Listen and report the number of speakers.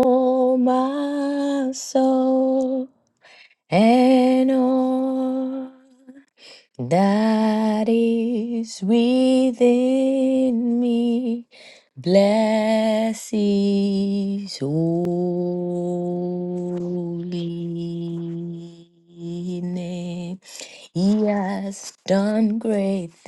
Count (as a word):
one